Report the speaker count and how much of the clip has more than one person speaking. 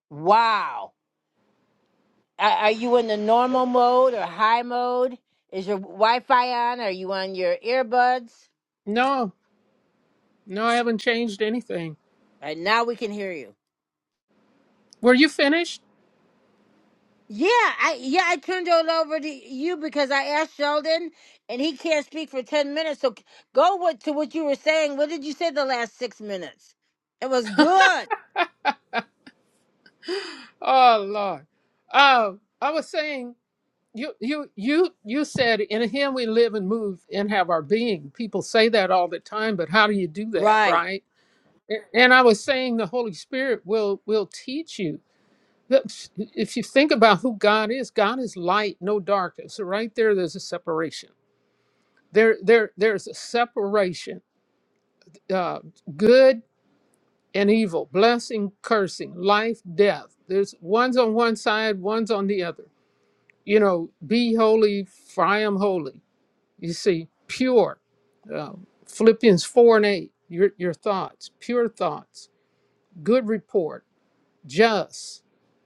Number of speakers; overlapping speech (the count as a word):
two, about 1%